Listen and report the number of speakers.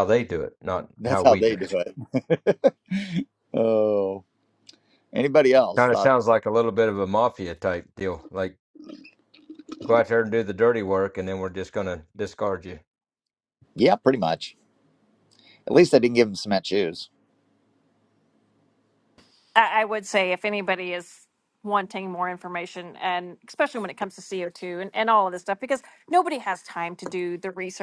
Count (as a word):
three